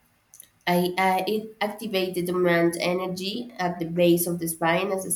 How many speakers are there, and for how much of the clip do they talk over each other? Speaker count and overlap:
1, no overlap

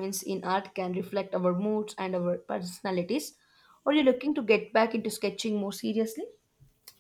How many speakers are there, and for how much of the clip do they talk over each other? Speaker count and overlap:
1, no overlap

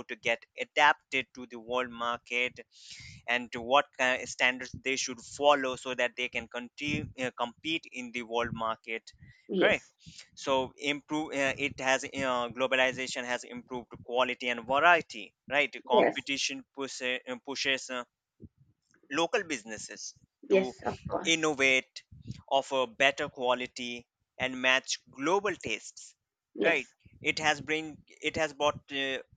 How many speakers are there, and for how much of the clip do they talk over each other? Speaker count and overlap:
2, about 3%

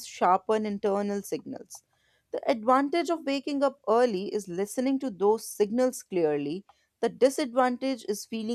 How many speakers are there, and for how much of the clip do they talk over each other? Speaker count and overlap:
1, no overlap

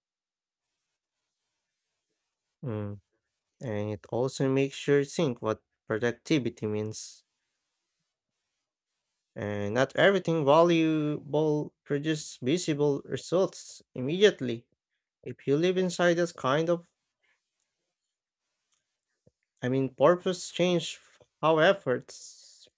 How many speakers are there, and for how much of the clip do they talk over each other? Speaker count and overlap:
1, no overlap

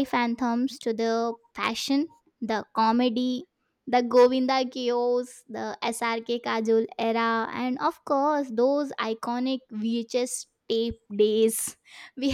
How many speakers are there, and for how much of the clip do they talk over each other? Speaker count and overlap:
1, no overlap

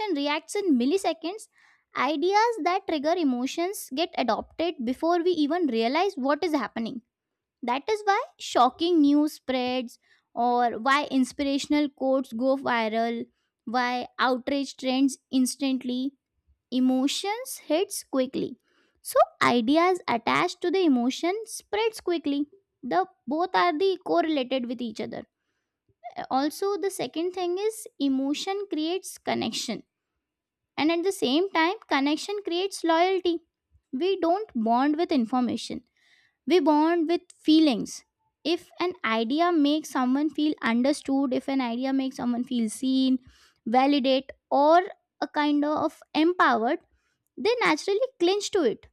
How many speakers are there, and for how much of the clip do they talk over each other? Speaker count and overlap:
1, no overlap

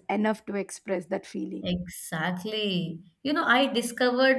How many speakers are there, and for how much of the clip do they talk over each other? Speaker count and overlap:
2, no overlap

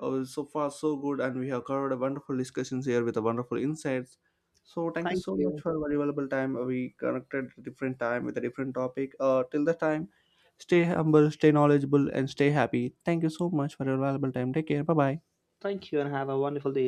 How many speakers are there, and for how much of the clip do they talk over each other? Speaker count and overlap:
2, about 4%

